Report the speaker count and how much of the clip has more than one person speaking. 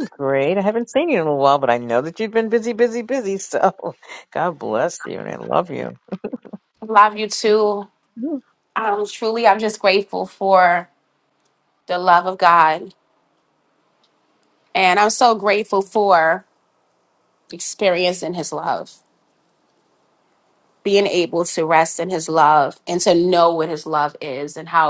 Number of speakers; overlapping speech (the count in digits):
2, no overlap